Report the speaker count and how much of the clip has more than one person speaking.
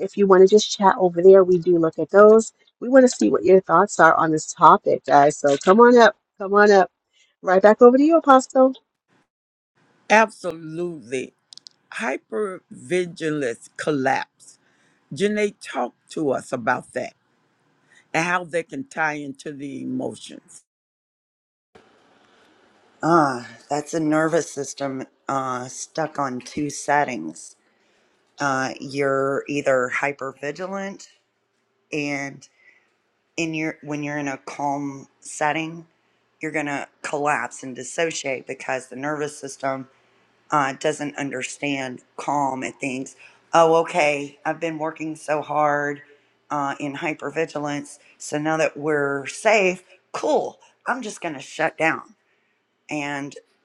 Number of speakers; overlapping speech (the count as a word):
three, no overlap